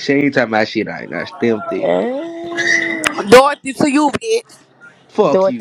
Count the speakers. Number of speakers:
three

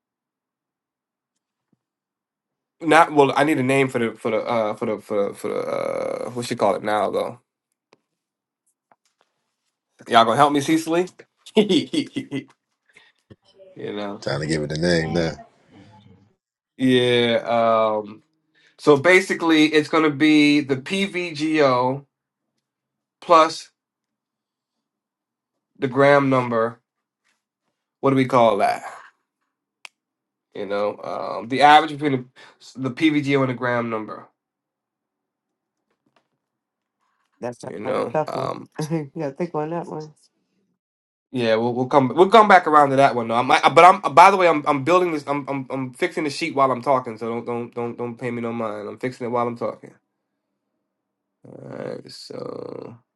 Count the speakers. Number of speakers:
three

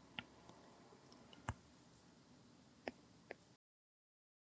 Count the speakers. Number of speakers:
zero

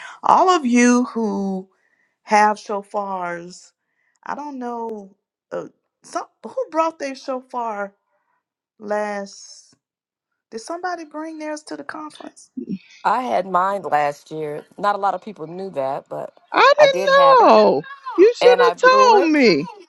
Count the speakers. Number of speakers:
three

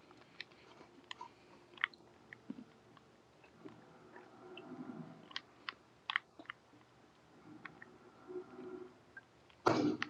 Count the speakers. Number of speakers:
zero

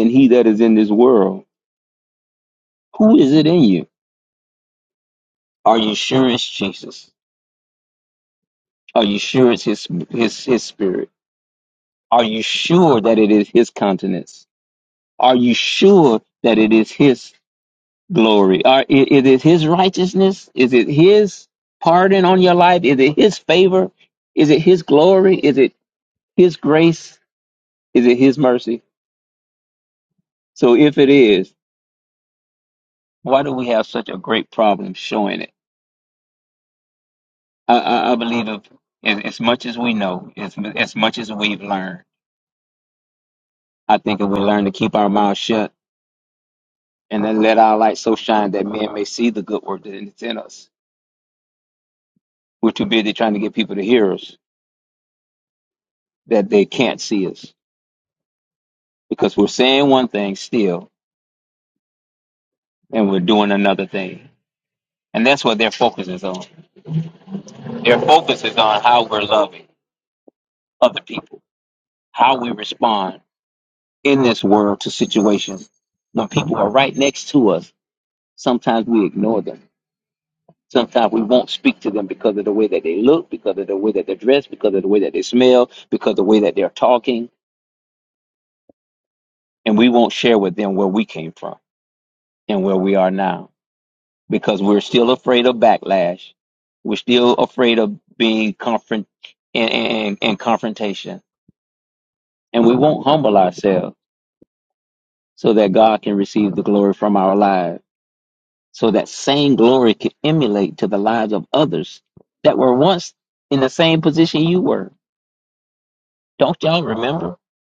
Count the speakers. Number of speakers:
one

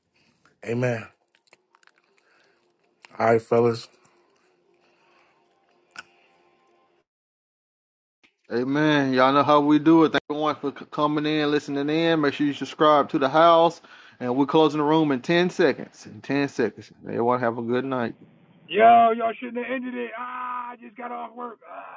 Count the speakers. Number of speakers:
three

